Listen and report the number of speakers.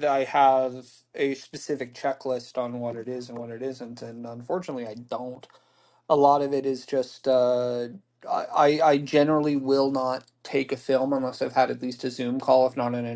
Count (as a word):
one